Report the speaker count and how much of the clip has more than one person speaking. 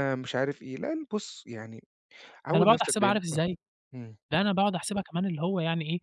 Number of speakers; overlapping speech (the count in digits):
2, about 14%